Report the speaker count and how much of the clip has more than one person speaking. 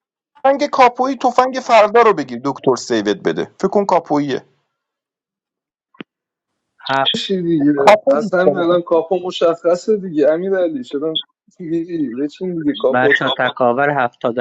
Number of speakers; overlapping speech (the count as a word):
three, about 9%